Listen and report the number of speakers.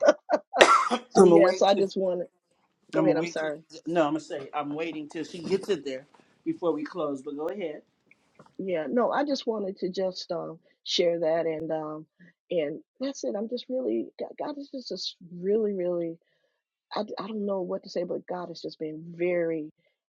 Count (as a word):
two